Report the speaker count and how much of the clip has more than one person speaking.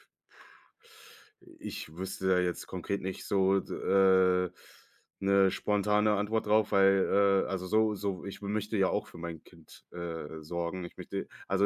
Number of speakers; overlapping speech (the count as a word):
one, no overlap